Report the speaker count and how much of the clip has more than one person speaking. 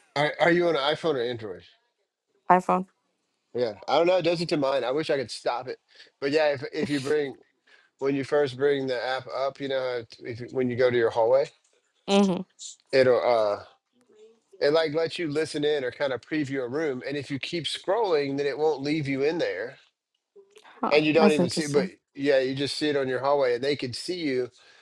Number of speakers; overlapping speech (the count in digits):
2, about 4%